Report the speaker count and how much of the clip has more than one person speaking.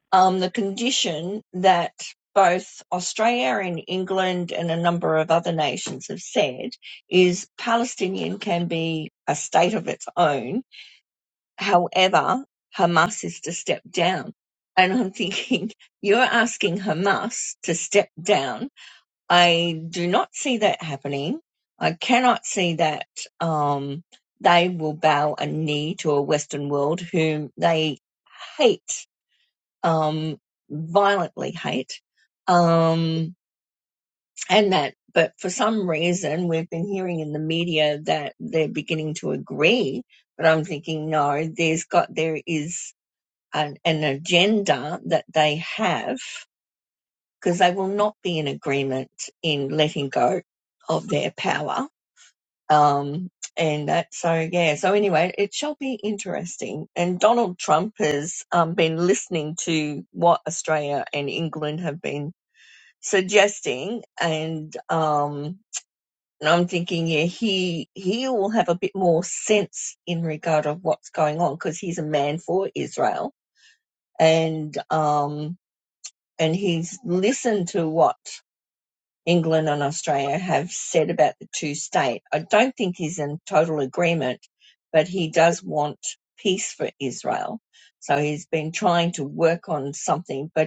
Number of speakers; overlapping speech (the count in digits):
1, no overlap